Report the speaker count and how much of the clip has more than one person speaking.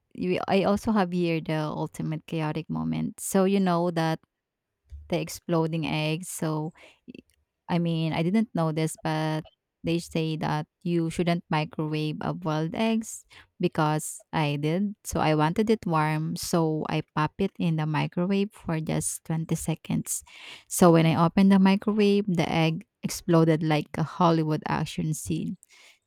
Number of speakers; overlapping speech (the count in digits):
1, no overlap